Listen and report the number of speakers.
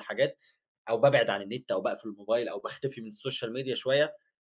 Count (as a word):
one